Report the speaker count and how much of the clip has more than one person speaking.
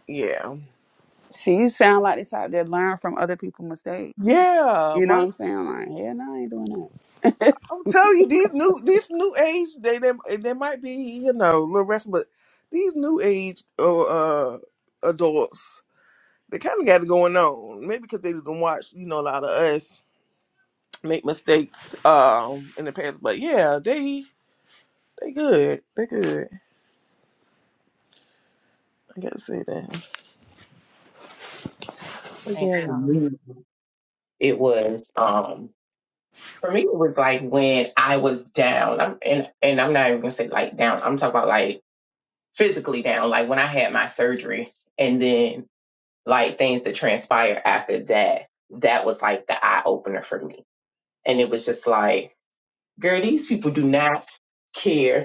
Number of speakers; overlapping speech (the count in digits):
3, about 2%